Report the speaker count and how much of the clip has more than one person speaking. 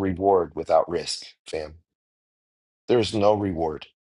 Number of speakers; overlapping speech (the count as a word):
one, no overlap